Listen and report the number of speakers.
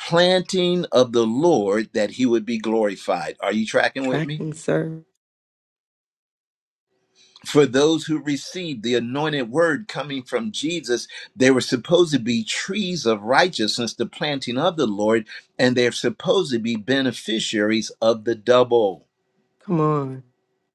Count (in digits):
2